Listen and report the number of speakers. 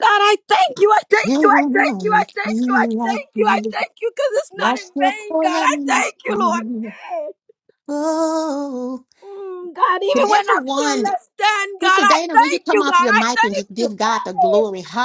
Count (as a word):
two